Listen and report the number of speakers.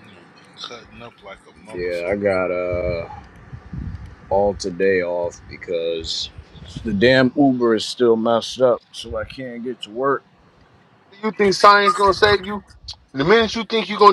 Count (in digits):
3